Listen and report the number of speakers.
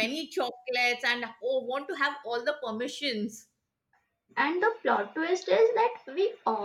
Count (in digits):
2